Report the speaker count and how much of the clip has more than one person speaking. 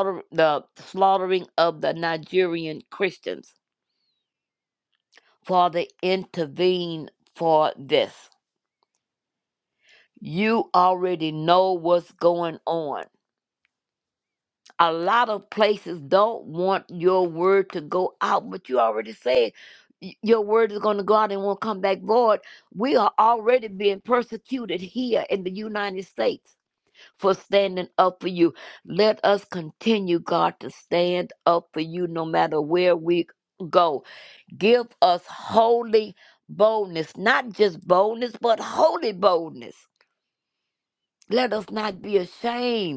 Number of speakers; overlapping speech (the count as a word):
one, no overlap